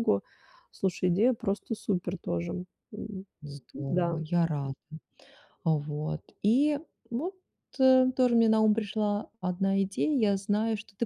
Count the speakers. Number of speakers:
2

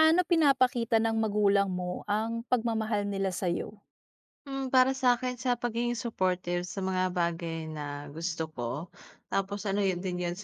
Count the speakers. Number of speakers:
2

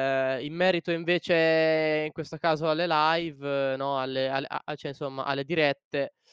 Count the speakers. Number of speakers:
1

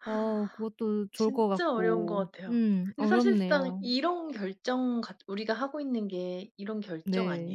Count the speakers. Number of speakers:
2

